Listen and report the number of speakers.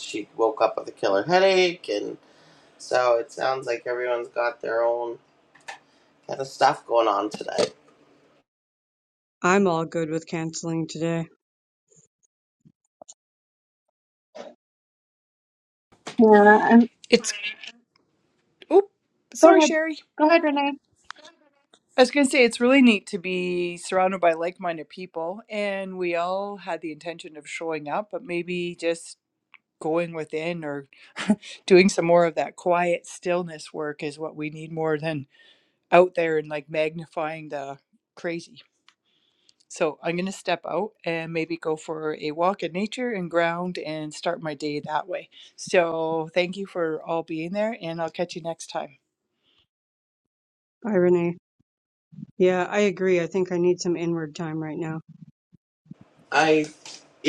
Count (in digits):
4